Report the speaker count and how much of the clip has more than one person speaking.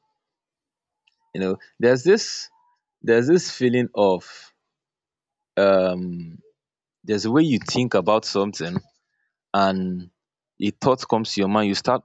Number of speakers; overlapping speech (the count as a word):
one, no overlap